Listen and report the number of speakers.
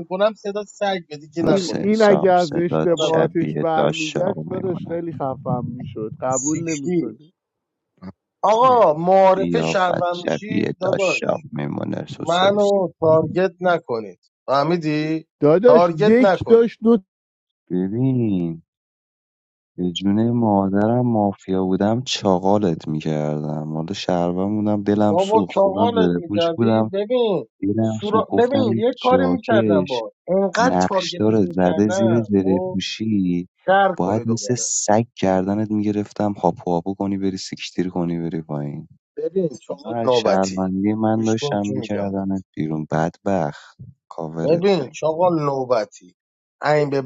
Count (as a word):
three